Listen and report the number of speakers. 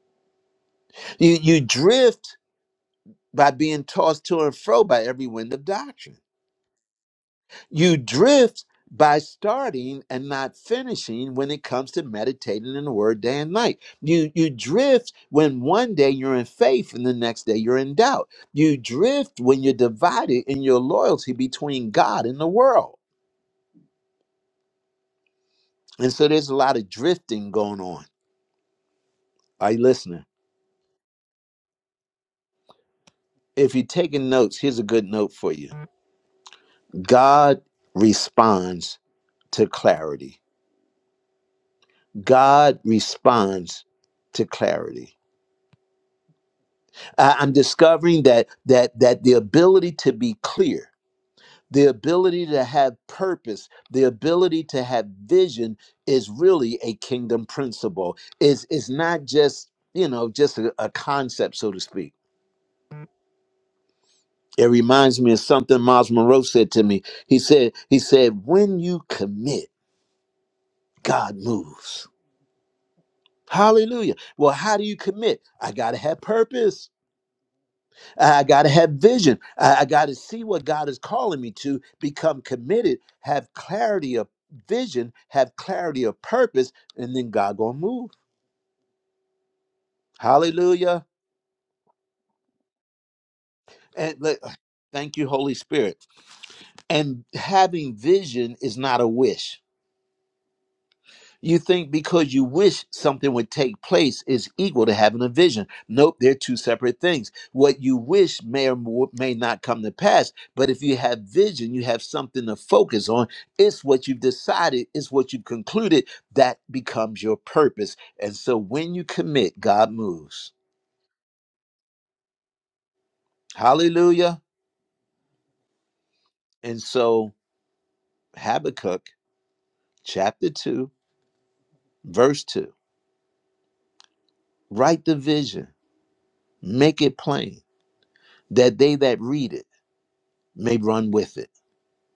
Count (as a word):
one